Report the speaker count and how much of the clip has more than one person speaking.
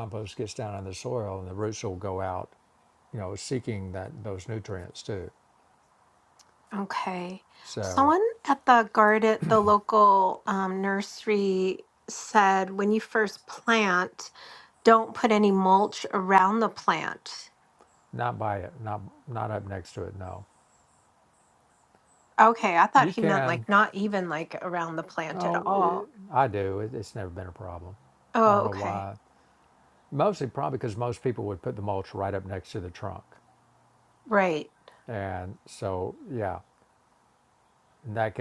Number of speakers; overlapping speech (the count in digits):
2, about 6%